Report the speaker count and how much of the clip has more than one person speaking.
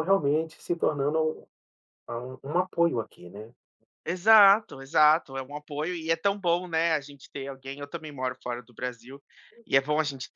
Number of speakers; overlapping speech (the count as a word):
two, no overlap